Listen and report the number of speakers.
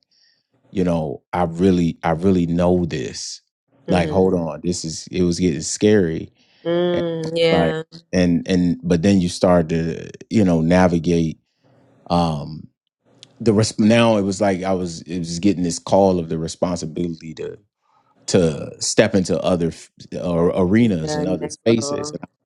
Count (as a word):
two